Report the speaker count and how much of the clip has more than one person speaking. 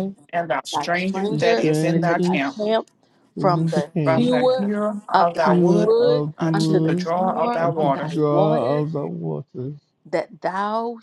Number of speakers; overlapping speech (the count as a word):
three, about 61%